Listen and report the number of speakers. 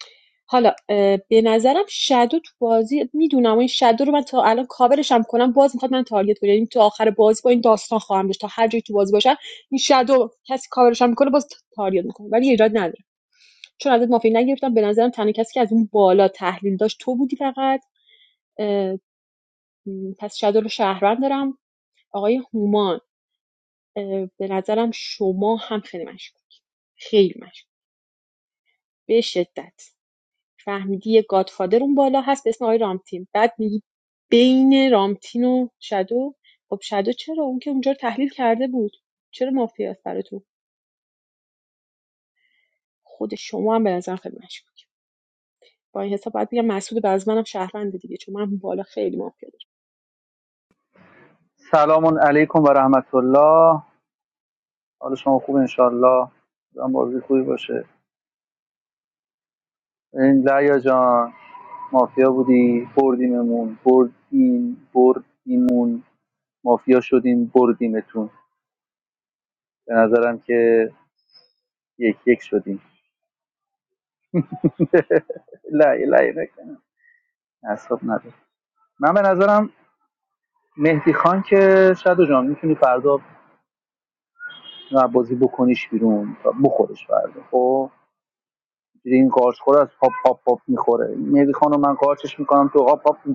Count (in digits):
2